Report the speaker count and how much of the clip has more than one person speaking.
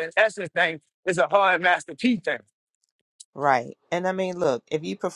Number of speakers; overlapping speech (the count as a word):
two, no overlap